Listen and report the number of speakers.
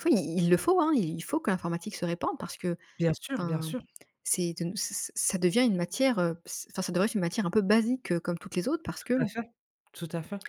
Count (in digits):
2